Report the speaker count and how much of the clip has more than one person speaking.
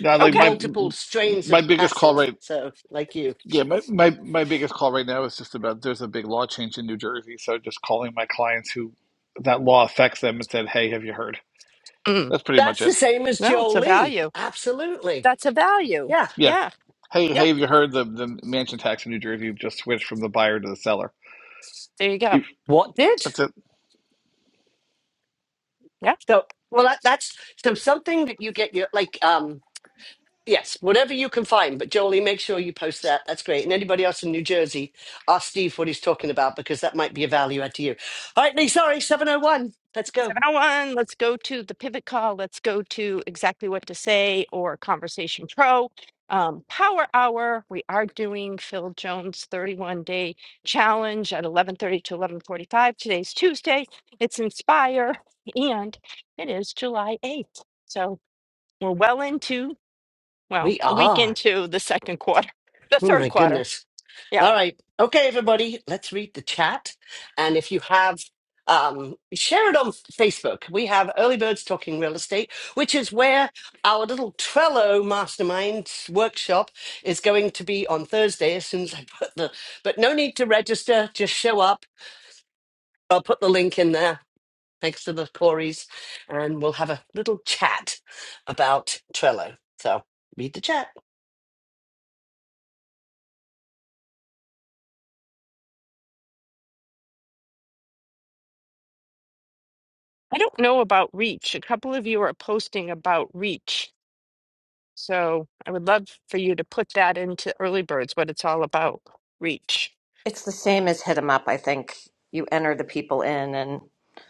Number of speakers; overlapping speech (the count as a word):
four, about 4%